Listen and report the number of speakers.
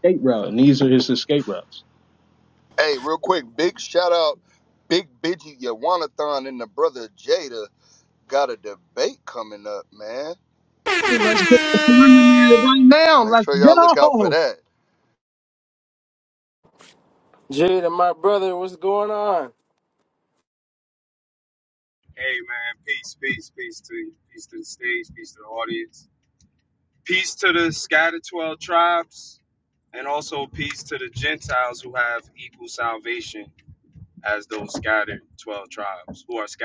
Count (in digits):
4